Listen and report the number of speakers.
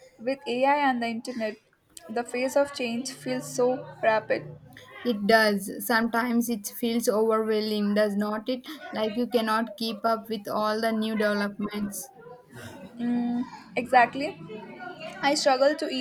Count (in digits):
2